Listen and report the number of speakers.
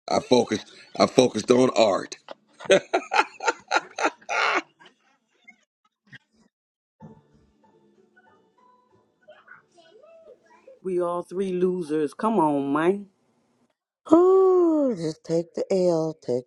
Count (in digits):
3